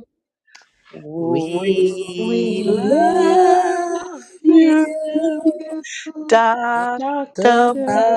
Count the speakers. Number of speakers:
3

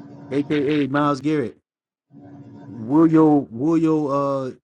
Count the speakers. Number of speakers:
1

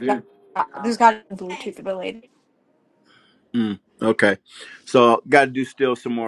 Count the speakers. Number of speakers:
2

